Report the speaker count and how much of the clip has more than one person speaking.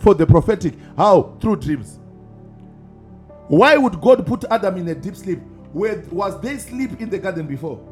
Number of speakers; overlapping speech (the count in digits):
1, no overlap